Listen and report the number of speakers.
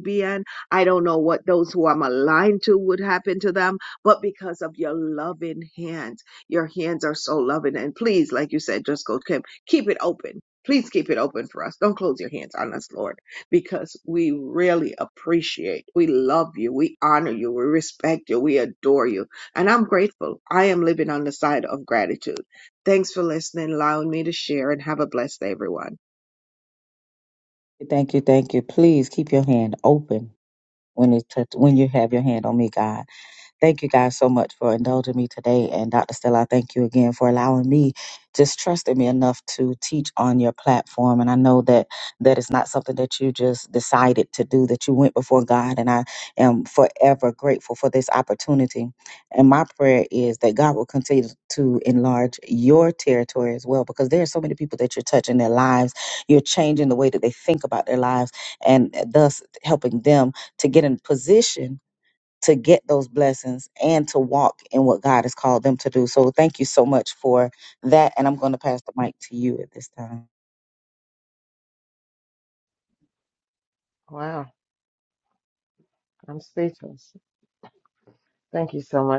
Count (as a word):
three